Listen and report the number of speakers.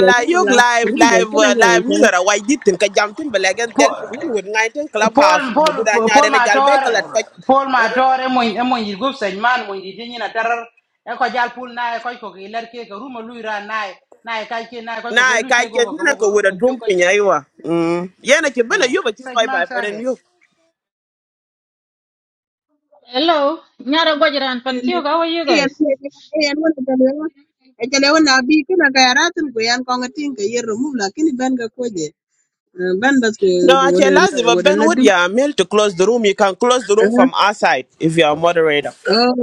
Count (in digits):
4